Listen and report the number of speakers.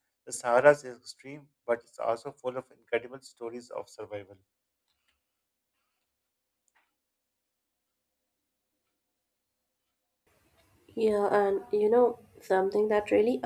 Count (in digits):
2